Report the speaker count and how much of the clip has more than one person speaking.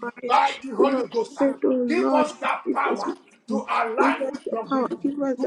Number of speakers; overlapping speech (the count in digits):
2, about 54%